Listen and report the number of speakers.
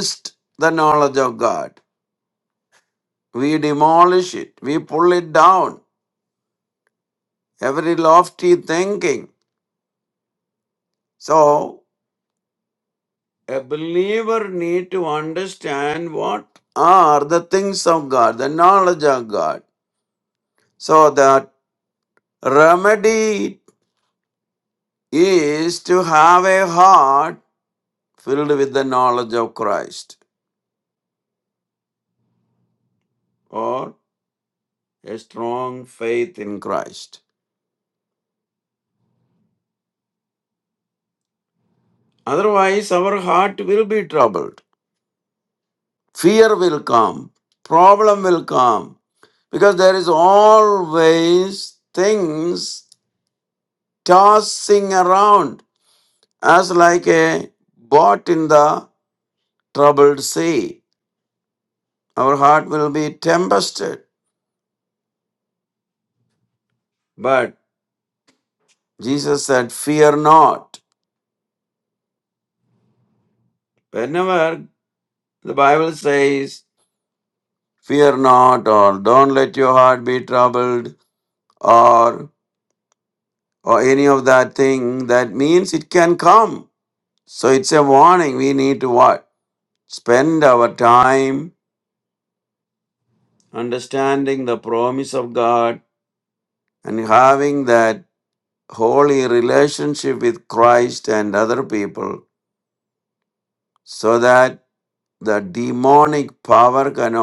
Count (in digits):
1